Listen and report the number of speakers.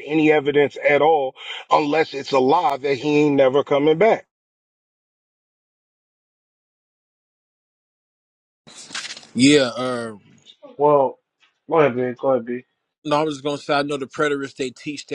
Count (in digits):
3